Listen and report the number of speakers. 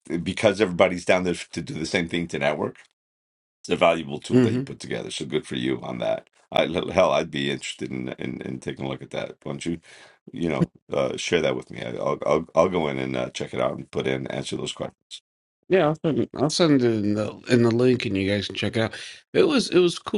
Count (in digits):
2